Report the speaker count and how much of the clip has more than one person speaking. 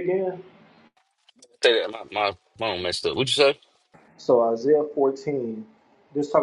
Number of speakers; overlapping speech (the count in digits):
2, no overlap